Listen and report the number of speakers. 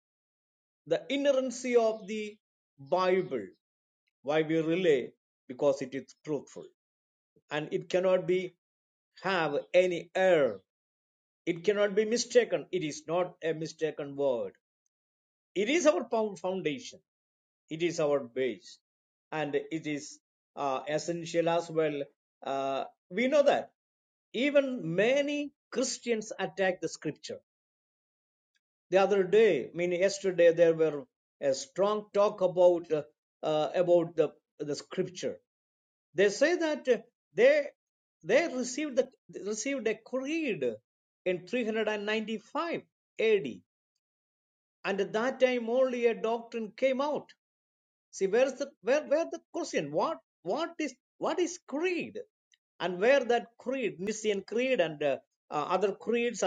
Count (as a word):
one